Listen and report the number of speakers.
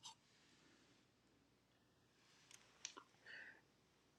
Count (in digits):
0